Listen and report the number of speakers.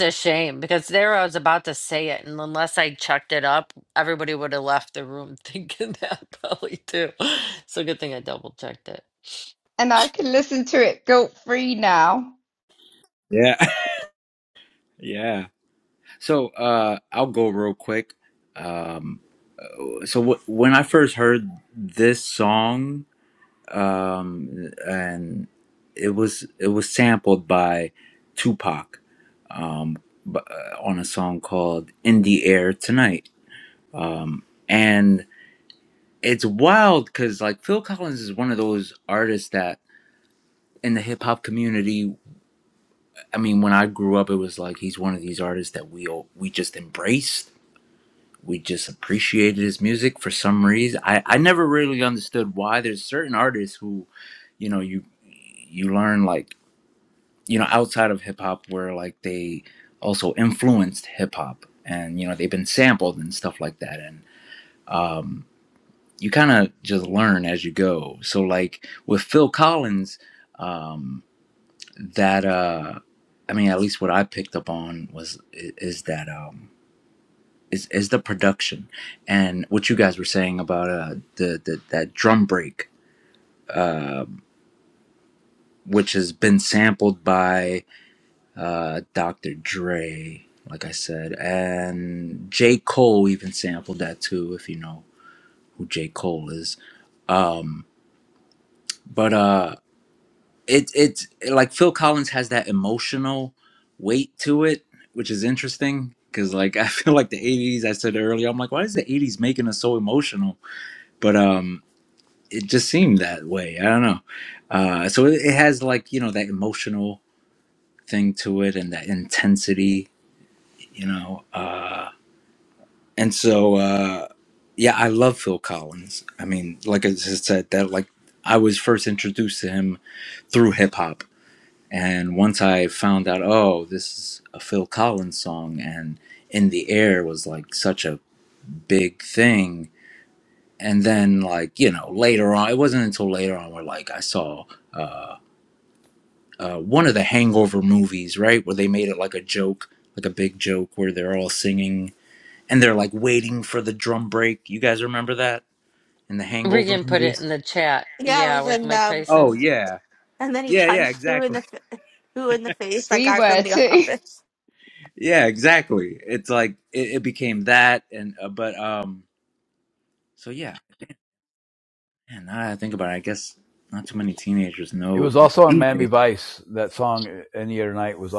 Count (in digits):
5